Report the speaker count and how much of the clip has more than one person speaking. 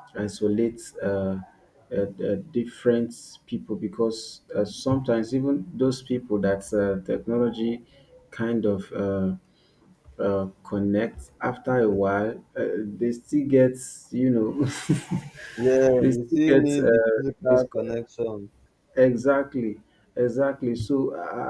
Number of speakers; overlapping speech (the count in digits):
2, about 5%